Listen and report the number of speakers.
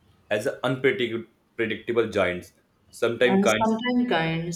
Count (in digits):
2